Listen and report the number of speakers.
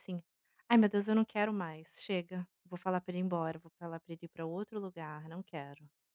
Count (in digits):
1